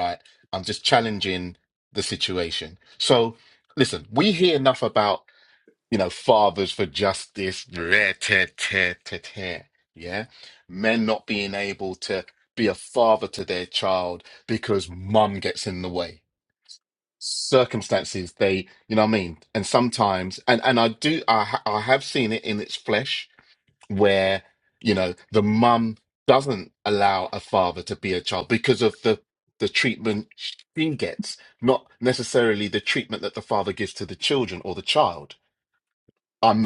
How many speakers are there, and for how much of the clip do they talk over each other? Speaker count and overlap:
1, no overlap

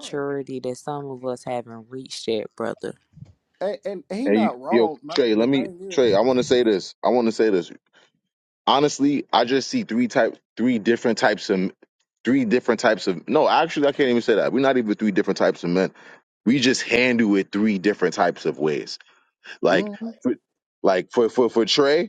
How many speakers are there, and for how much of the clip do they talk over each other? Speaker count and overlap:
3, about 10%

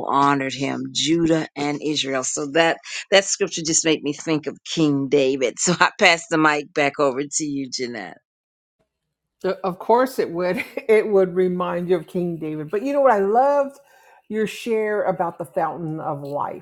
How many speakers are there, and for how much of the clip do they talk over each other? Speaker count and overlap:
2, no overlap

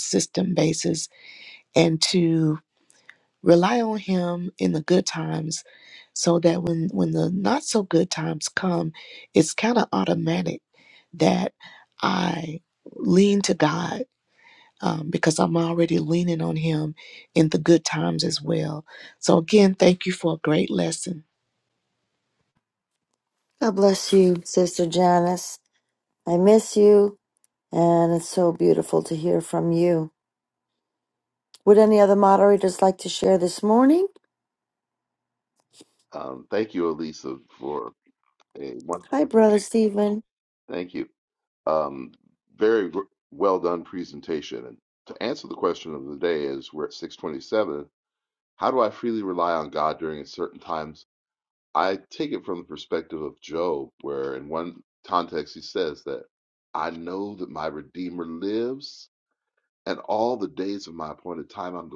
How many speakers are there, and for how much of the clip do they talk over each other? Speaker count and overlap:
3, under 1%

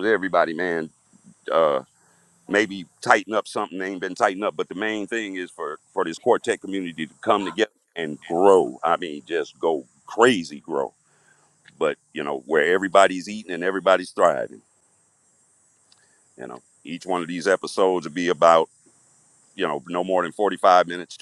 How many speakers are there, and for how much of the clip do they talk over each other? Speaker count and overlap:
1, no overlap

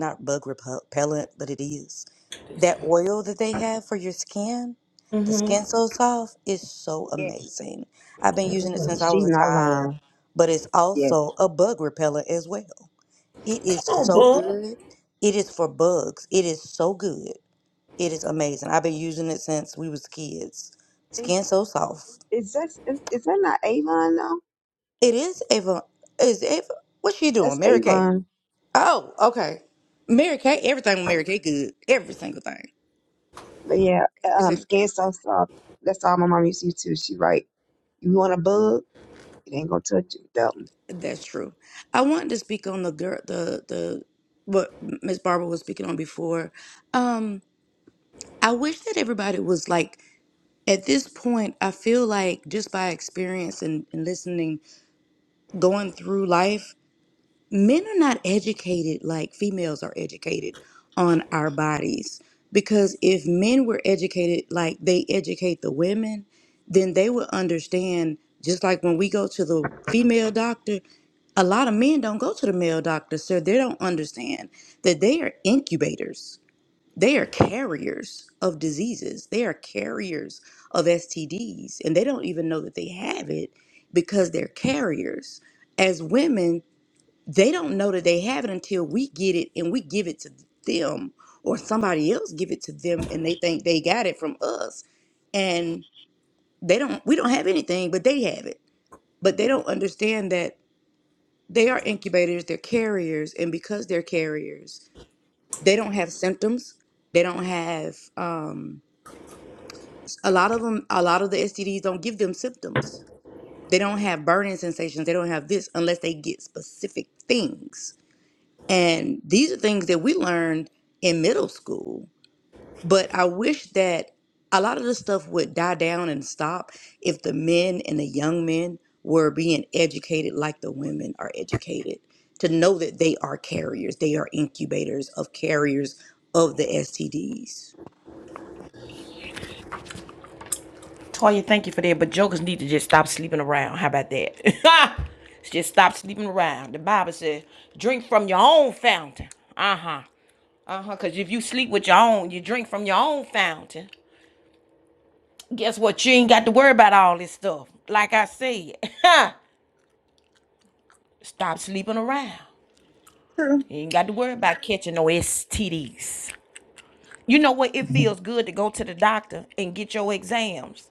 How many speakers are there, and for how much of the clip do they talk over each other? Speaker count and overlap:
3, about 2%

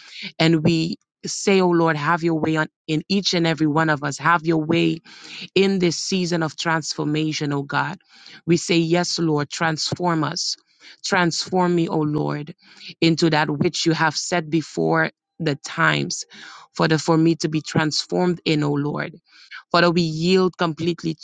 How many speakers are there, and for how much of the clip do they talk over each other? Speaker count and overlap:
1, no overlap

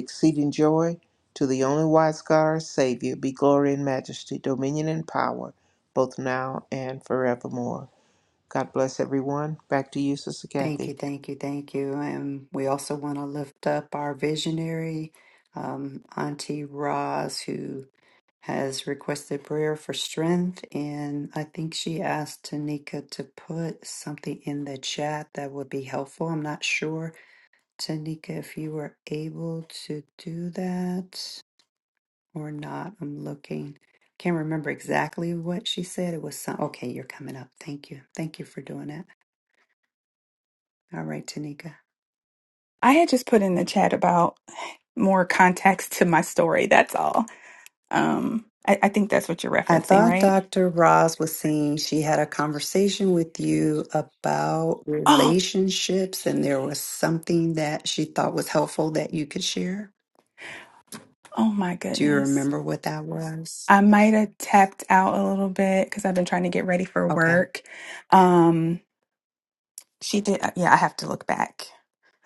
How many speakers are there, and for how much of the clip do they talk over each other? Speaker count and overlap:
3, about 3%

